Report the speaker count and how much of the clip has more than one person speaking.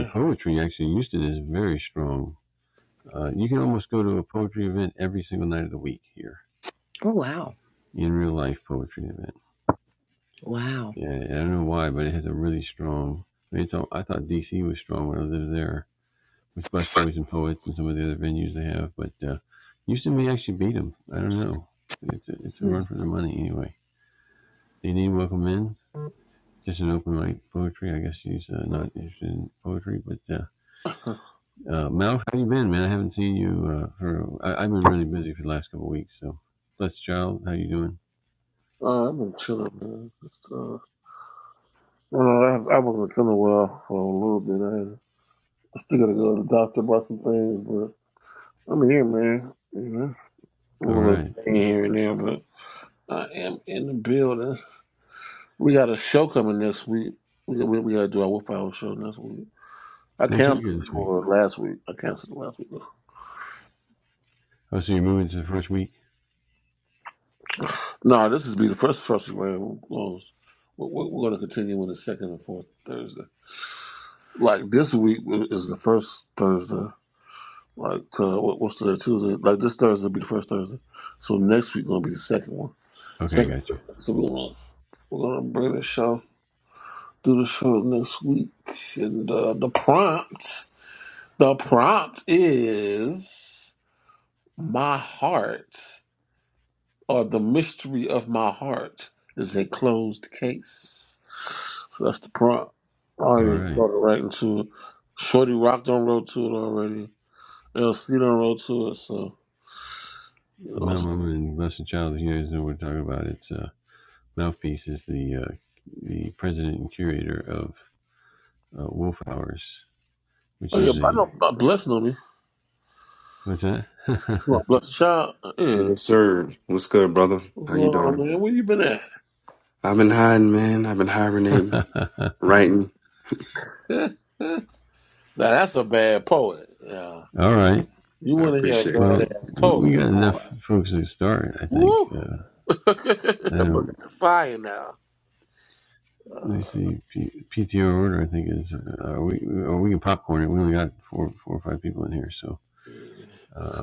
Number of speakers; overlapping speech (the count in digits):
4, about 5%